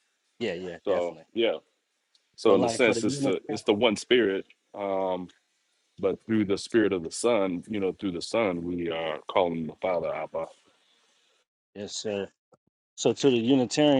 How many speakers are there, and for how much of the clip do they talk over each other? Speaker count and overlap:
two, about 9%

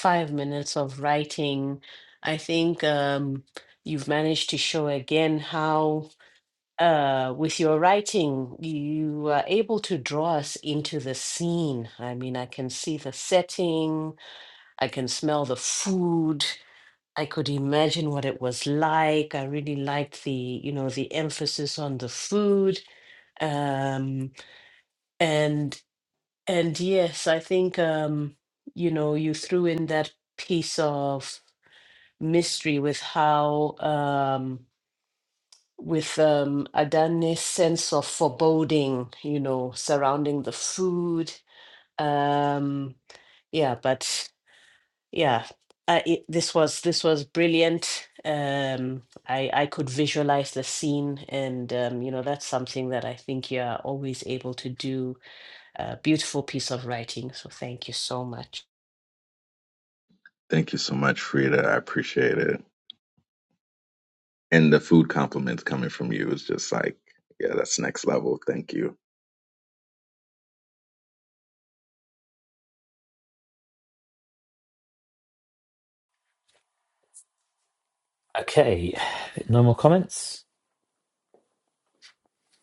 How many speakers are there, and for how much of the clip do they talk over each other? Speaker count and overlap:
three, no overlap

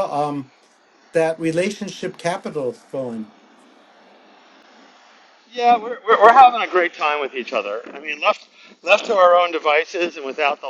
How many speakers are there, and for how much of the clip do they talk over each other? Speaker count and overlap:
two, no overlap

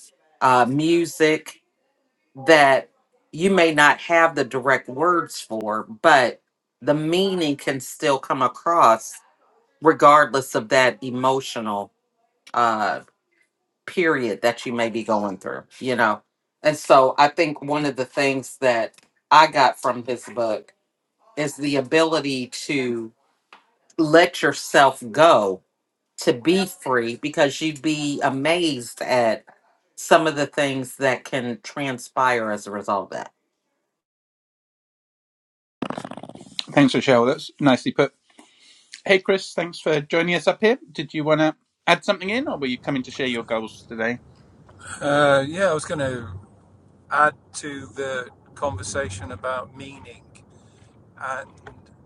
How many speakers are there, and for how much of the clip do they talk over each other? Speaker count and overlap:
three, no overlap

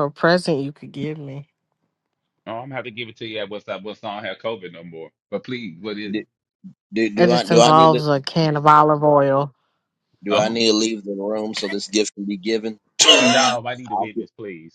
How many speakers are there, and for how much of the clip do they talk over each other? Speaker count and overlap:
three, about 14%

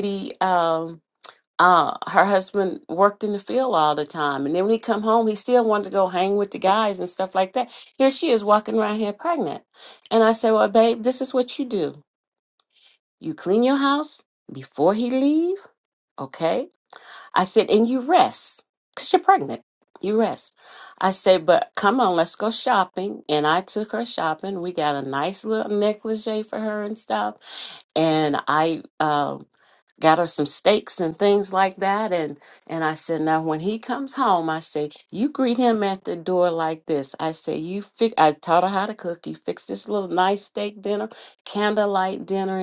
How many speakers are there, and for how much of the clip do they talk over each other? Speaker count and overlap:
one, no overlap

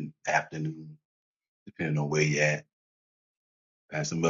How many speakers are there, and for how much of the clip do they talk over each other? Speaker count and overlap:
one, no overlap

